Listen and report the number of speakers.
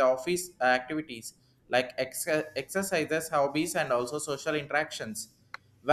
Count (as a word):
one